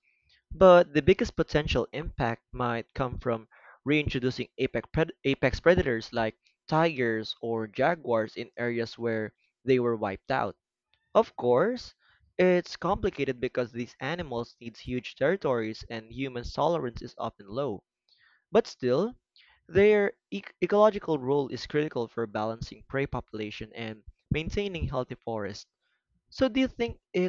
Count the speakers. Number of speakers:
1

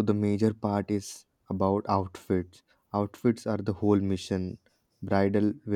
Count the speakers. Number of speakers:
1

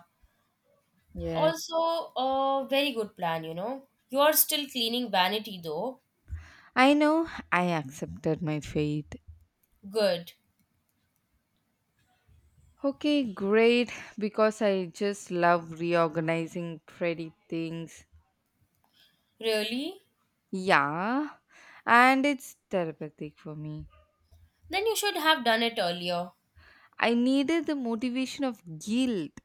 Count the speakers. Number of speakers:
2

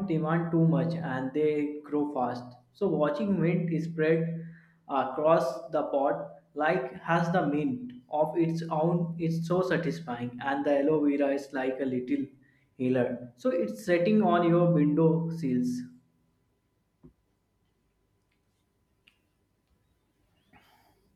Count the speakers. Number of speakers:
1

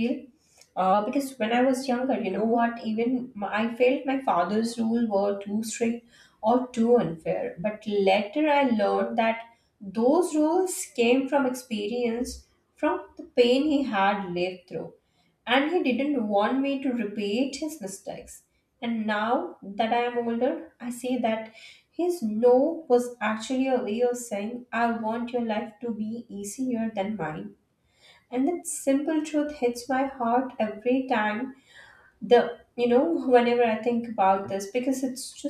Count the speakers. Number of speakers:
1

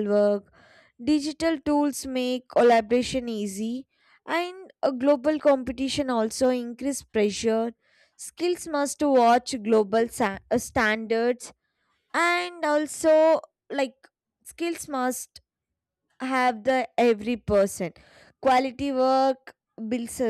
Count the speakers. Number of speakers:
1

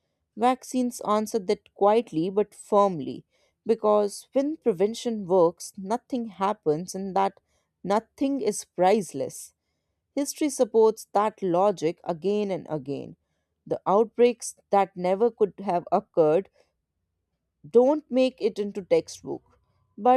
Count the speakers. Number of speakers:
1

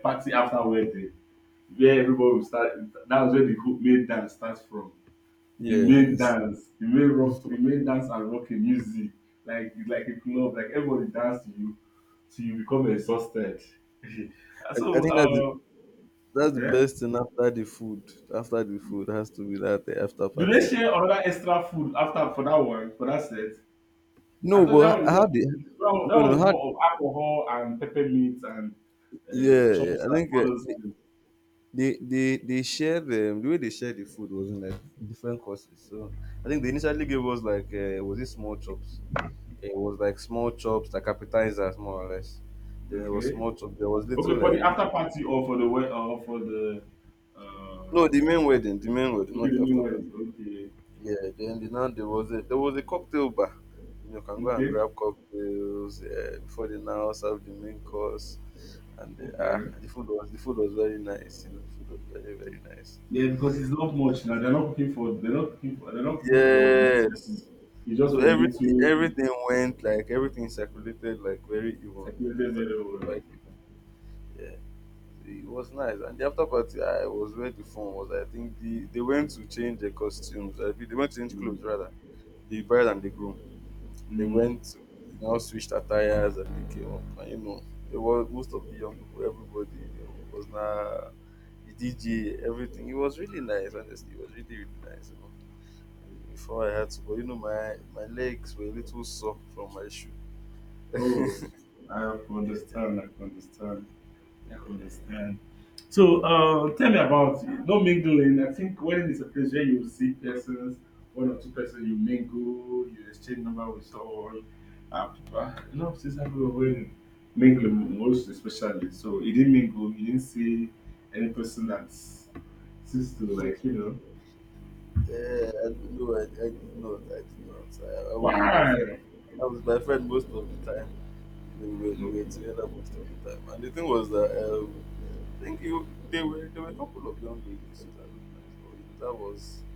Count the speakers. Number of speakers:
2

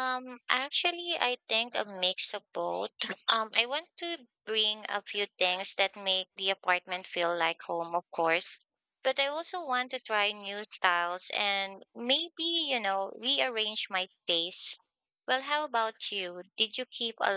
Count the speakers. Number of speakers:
1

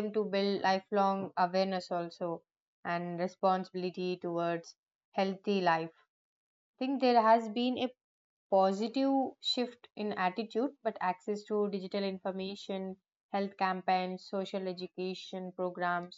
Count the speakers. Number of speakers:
1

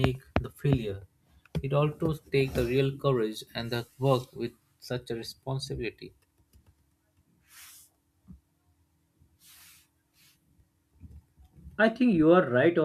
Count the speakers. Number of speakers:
2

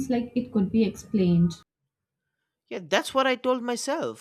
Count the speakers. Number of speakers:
2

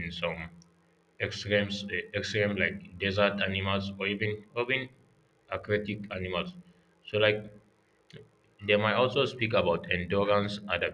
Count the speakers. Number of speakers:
1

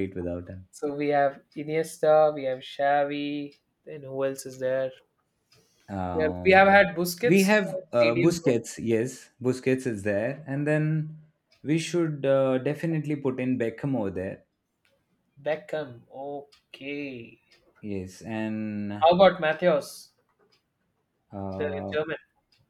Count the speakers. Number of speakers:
2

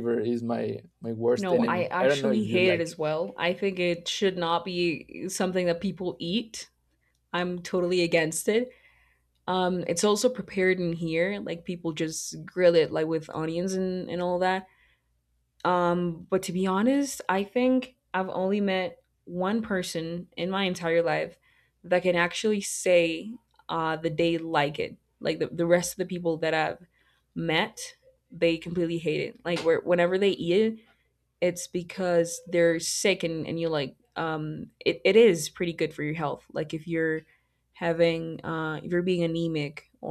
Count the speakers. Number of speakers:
2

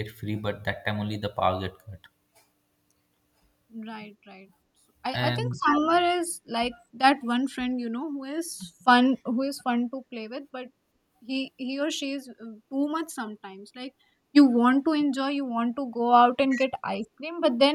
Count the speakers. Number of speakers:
2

